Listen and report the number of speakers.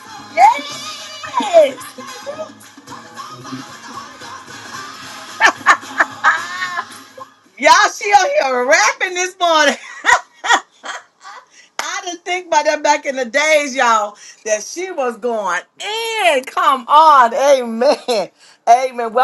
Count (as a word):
one